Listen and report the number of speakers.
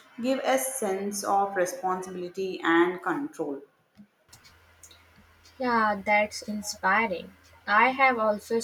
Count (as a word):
two